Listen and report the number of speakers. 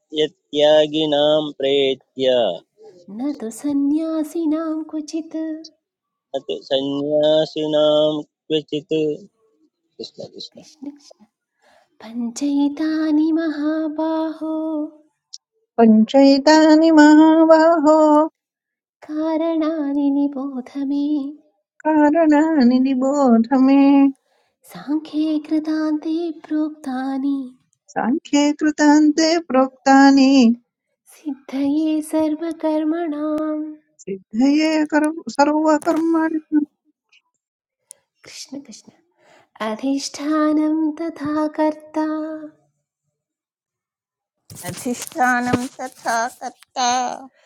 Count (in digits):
4